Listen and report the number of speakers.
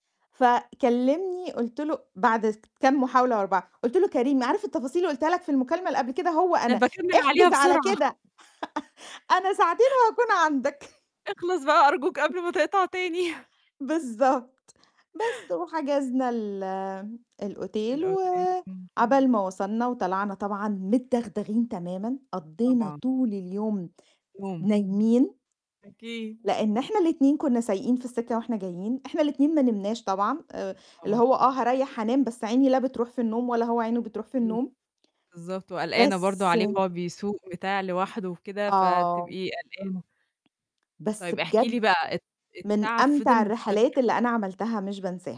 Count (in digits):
2